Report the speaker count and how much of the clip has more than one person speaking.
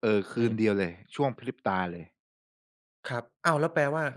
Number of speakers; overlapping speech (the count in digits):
2, about 5%